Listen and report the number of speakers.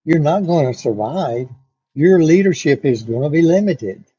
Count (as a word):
one